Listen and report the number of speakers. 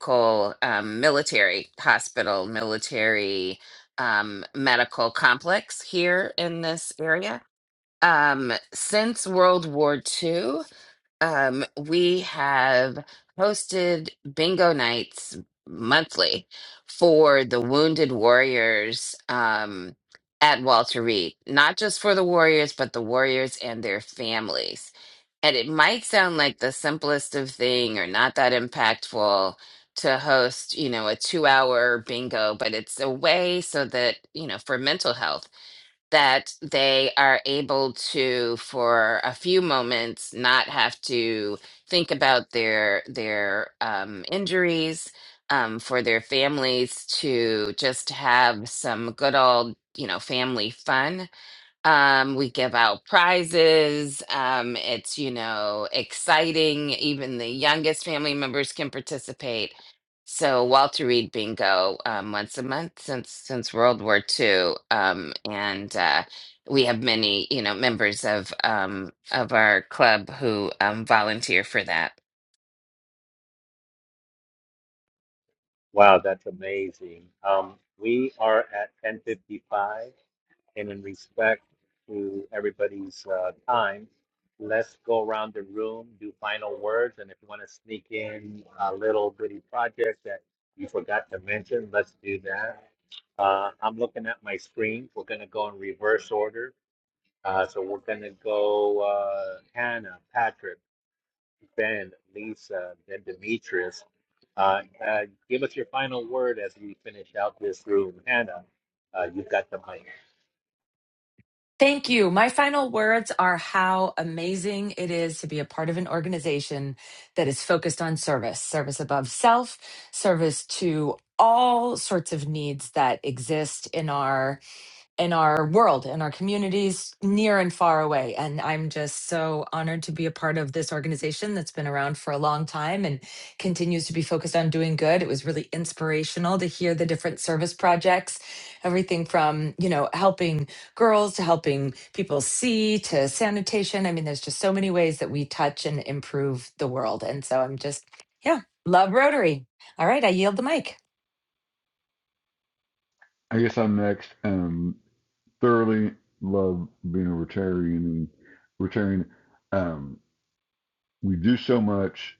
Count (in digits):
4